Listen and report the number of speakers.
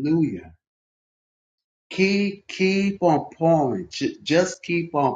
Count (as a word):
one